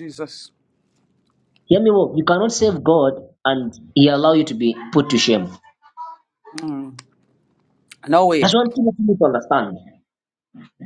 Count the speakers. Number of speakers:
2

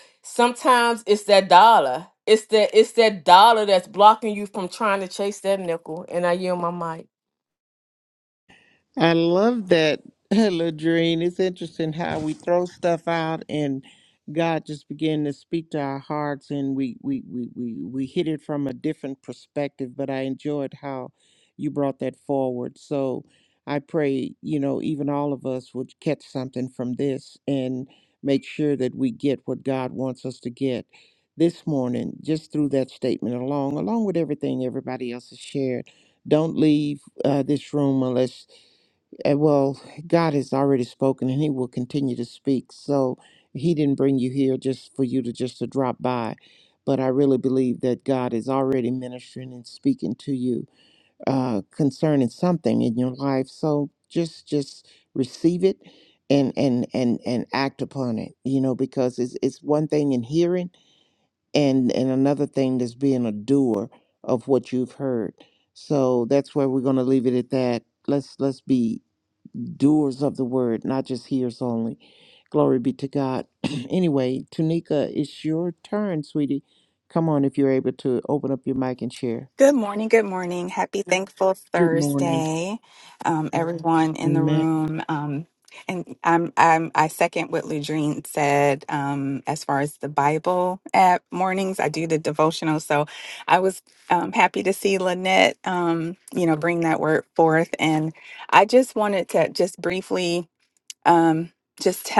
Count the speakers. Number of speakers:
3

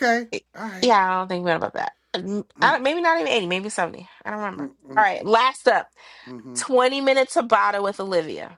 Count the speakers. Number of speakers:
2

